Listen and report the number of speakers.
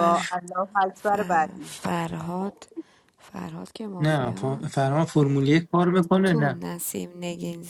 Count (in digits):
3